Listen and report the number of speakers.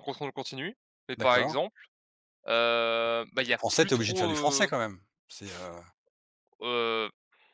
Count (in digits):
2